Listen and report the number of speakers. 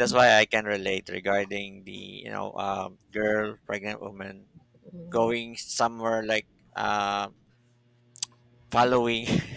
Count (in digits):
1